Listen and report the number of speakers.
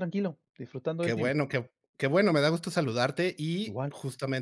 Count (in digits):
2